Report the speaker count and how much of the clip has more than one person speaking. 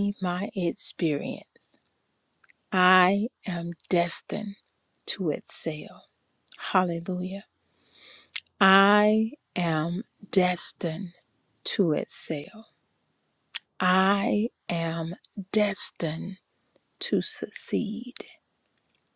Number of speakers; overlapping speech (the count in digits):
1, no overlap